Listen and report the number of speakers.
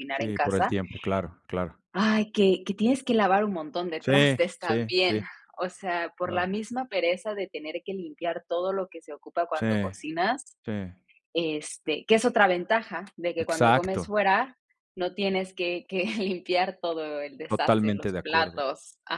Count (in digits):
2